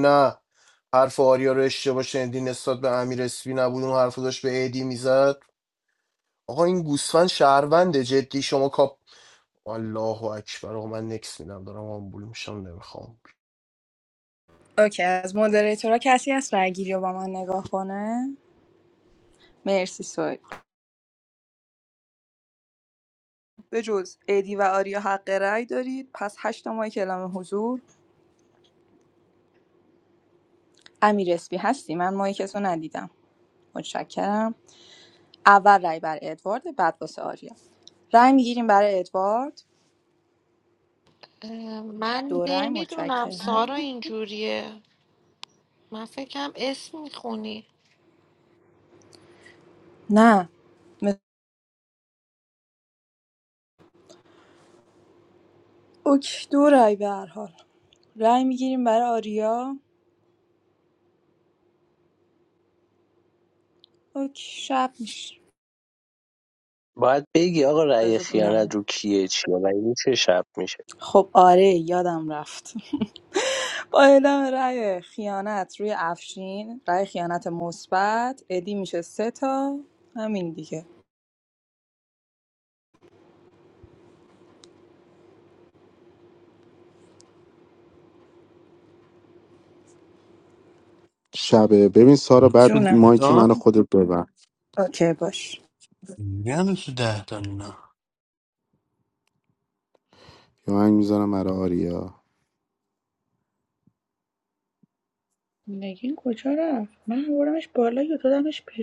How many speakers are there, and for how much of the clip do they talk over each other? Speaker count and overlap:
7, about 3%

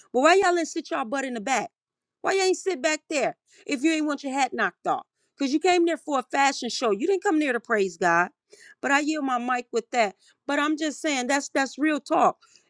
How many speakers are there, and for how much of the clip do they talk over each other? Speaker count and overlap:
1, no overlap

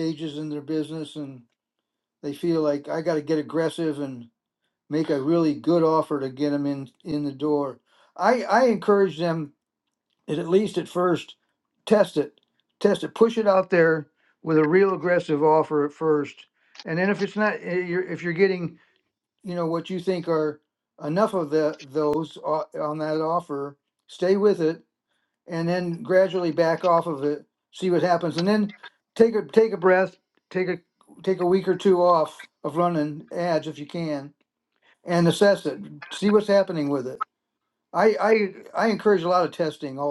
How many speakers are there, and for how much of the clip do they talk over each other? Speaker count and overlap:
1, no overlap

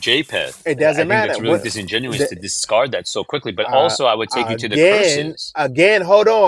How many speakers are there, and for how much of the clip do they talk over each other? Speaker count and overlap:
2, about 49%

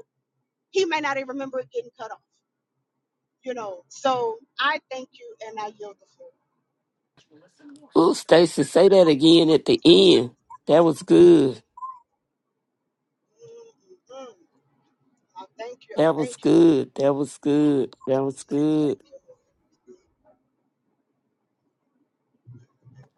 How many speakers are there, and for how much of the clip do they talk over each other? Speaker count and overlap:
2, about 5%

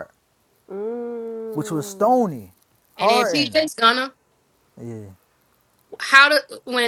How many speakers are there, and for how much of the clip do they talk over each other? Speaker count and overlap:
3, about 11%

